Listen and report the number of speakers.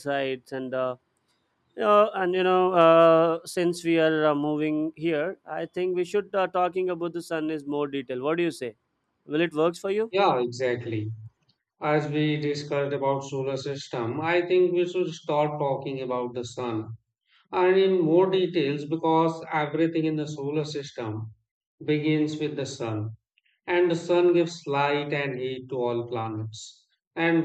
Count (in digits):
2